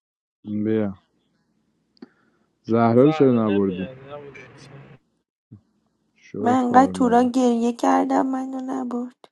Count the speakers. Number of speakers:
3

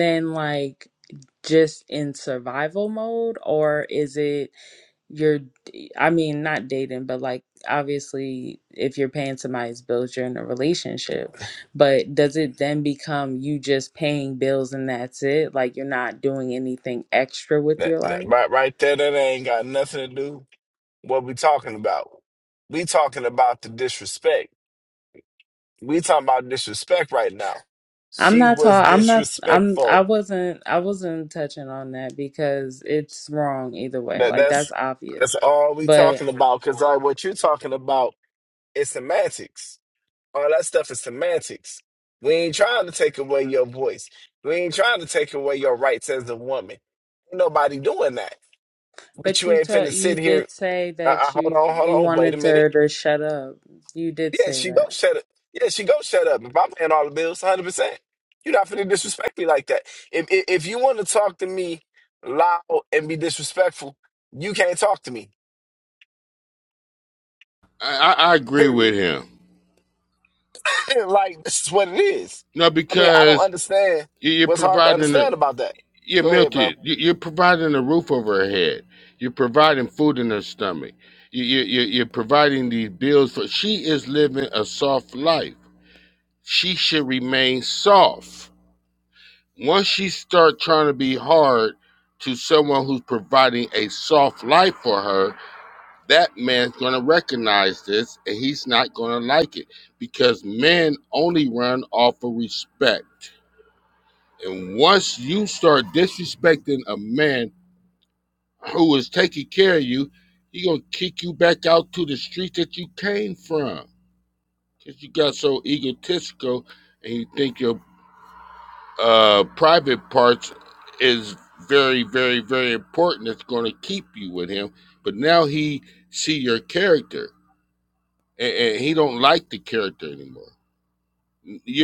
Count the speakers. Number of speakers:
3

